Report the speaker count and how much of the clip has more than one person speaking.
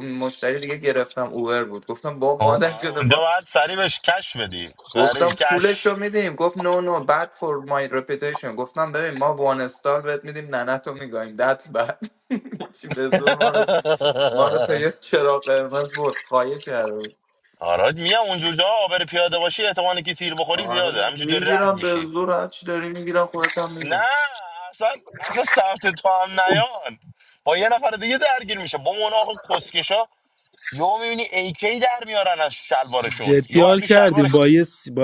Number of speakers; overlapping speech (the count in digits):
3, about 13%